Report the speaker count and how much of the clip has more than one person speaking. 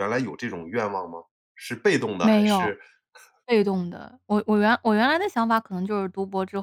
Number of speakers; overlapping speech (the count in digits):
2, about 7%